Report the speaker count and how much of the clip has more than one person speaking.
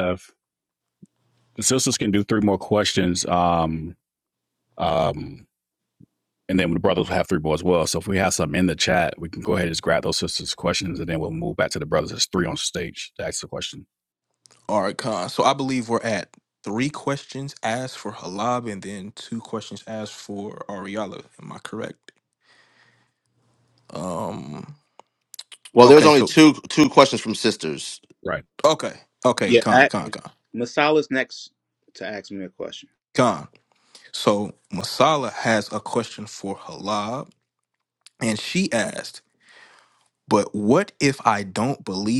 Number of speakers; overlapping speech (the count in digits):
4, about 2%